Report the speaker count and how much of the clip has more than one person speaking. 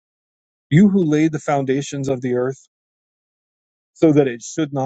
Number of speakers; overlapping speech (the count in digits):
1, no overlap